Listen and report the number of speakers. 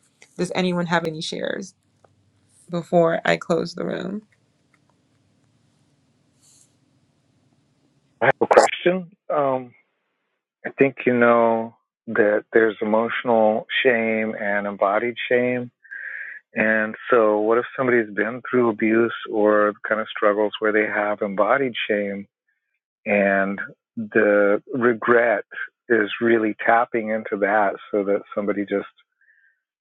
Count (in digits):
2